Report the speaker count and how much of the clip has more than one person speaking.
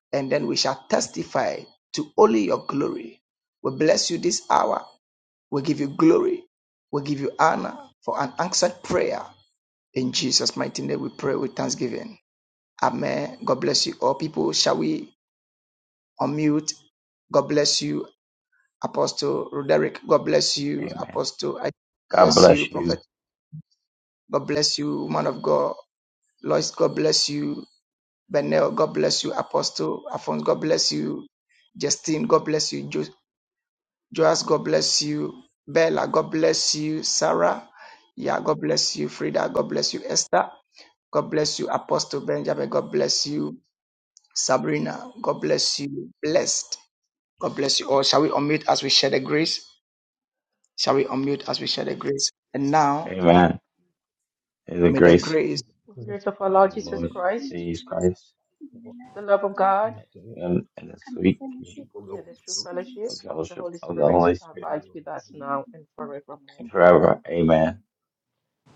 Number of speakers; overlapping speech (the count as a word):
four, about 11%